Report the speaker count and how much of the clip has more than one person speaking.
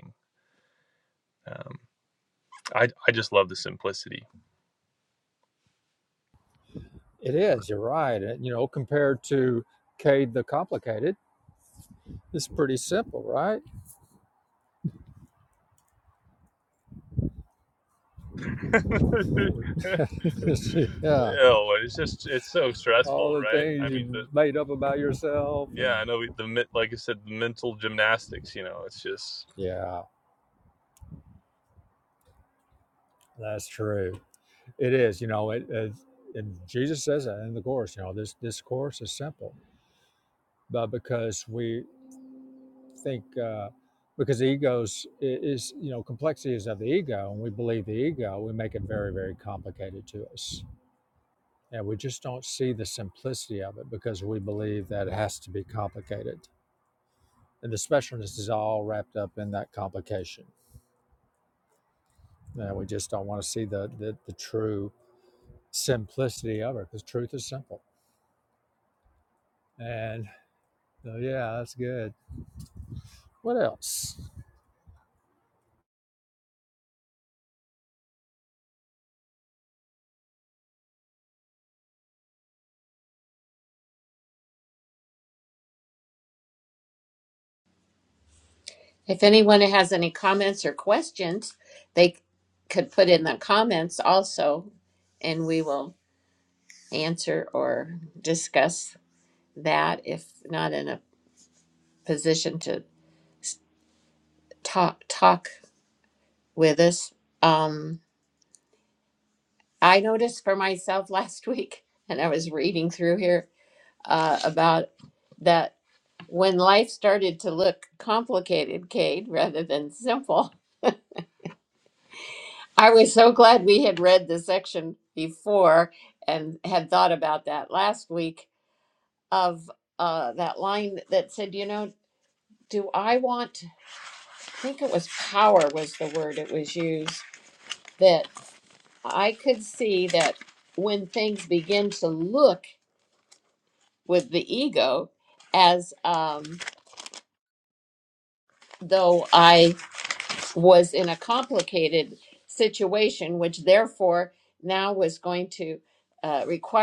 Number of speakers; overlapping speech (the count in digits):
3, about 1%